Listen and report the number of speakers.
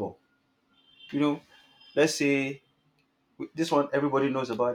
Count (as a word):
one